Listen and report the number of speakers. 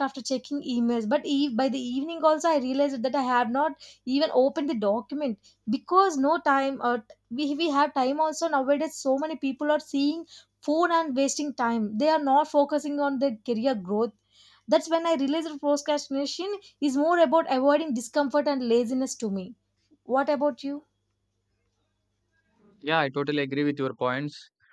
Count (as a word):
two